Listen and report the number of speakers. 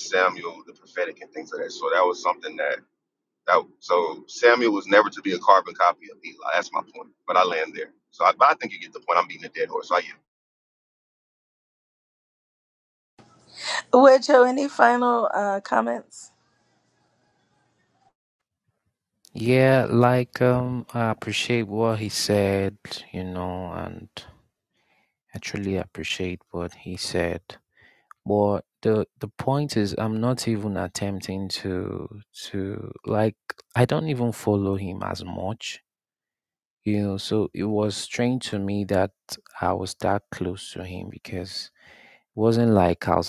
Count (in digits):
3